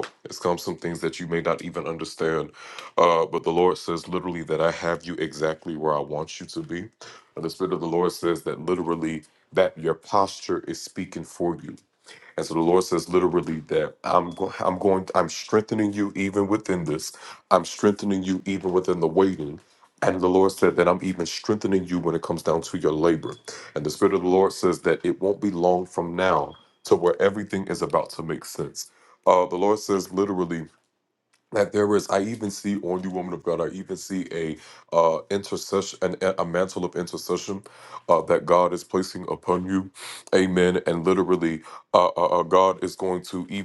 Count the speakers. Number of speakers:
1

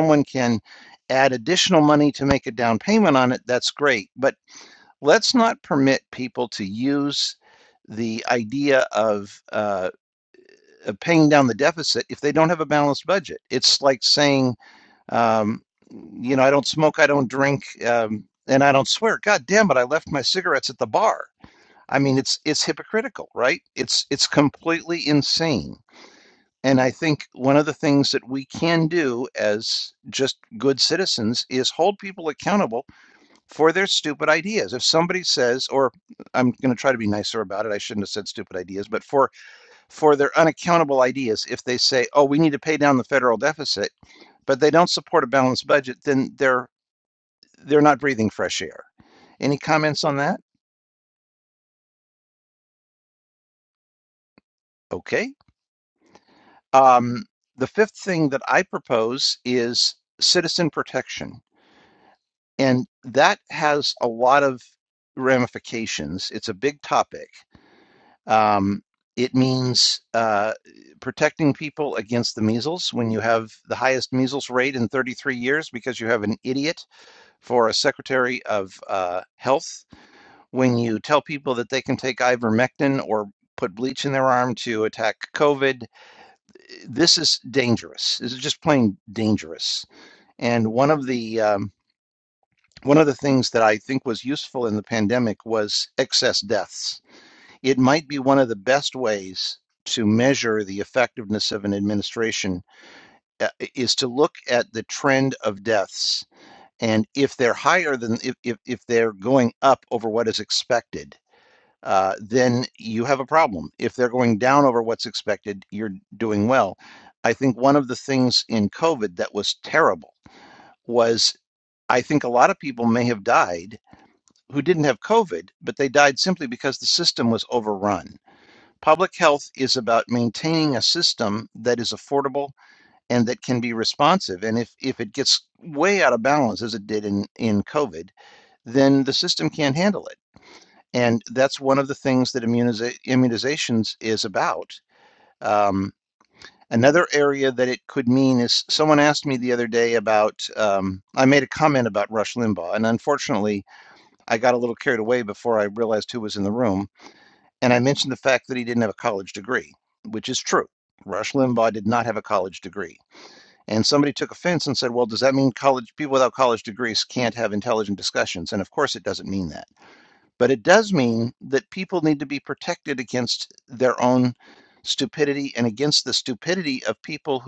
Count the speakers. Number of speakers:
1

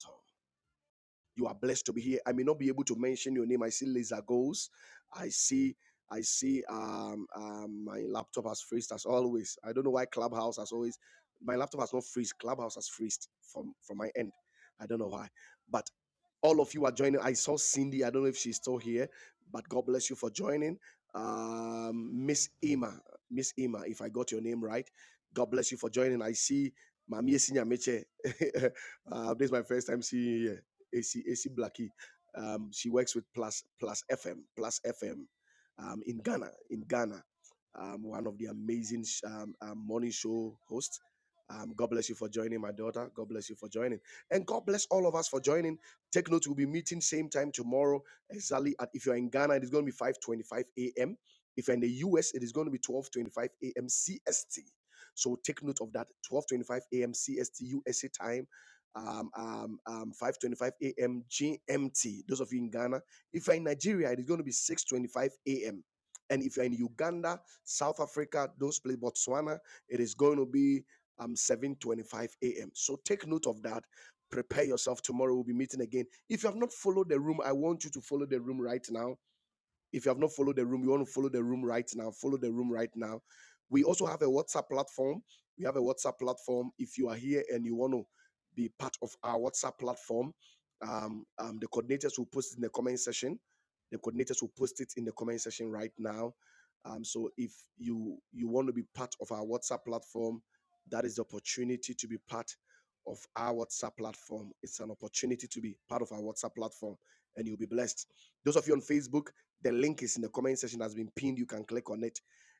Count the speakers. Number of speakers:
1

